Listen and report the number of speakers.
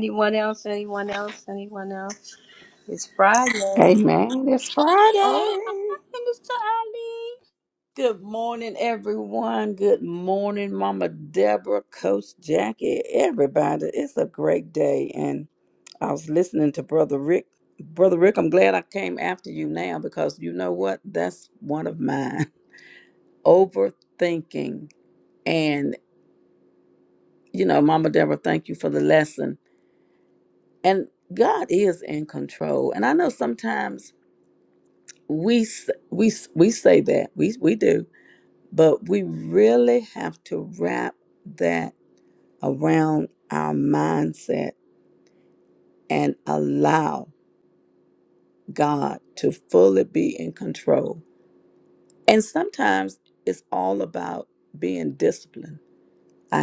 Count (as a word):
two